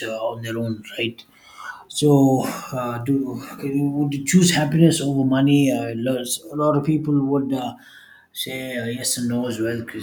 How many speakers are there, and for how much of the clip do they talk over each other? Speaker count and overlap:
1, no overlap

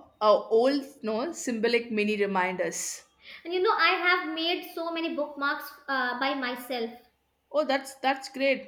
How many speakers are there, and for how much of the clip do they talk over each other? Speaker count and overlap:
2, no overlap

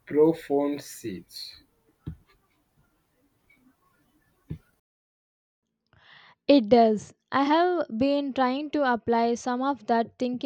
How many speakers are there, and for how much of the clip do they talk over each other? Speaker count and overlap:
2, no overlap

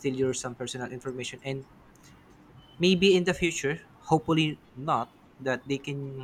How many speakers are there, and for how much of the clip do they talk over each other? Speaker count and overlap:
1, no overlap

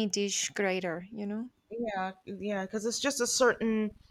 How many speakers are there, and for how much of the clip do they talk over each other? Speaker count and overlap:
2, no overlap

